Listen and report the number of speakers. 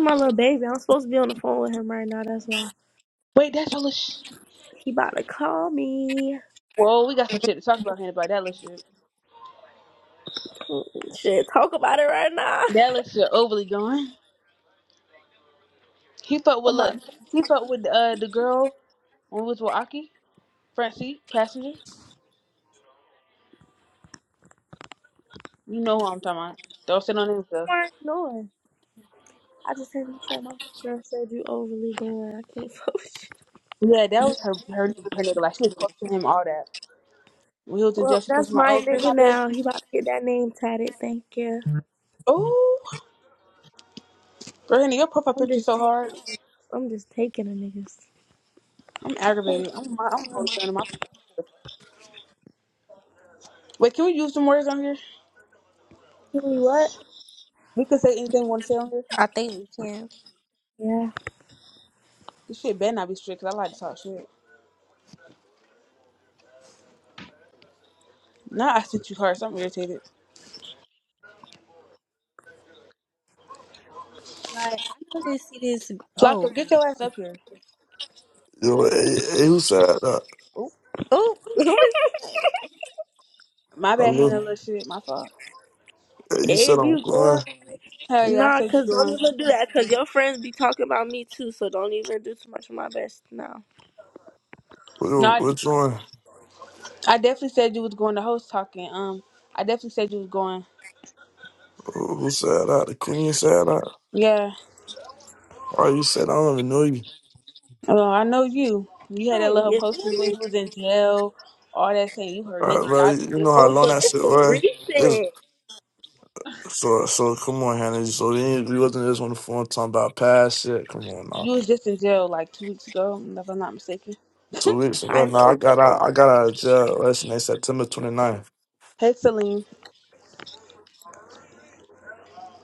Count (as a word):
four